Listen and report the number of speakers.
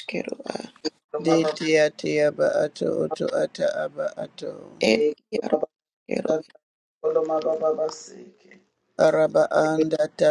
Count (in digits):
3